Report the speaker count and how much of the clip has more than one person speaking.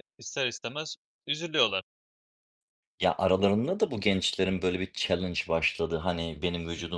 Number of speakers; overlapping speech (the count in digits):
2, about 3%